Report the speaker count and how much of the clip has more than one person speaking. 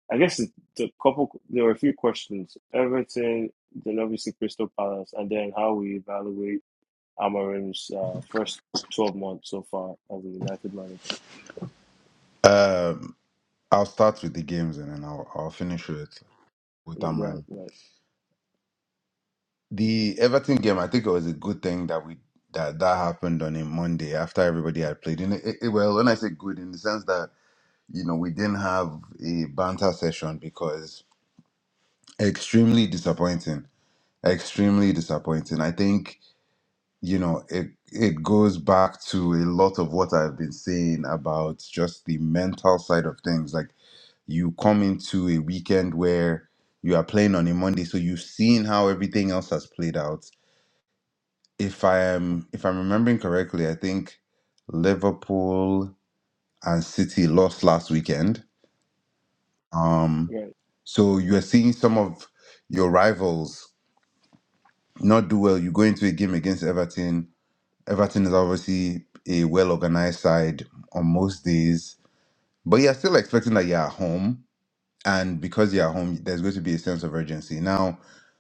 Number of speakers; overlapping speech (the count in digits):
2, about 1%